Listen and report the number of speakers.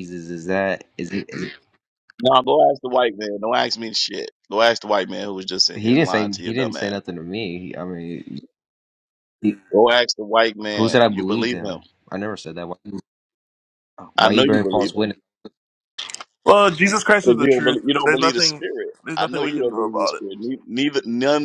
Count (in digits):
3